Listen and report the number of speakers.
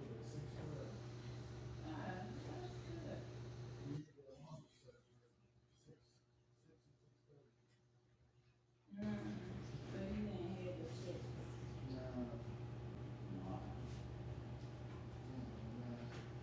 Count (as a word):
zero